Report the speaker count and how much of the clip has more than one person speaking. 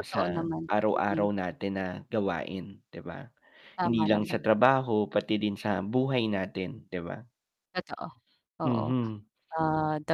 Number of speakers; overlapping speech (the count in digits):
2, about 20%